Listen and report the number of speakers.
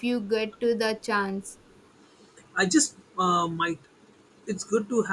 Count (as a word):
two